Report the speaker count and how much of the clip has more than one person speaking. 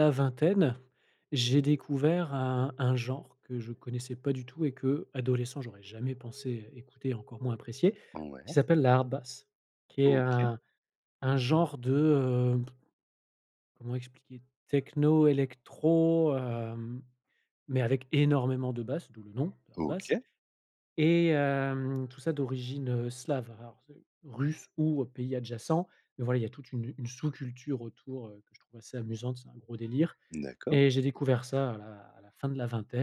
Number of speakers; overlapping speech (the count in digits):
2, about 2%